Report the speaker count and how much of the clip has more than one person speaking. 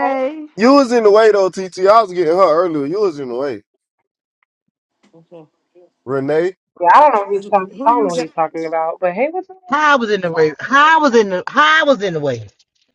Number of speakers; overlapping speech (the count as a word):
four, about 8%